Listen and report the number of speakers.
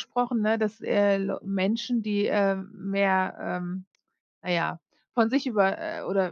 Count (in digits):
1